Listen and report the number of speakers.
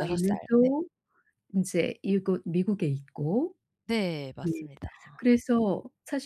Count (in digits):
2